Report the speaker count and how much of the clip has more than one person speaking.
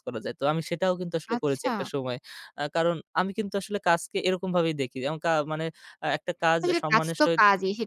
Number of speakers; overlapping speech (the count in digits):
2, about 17%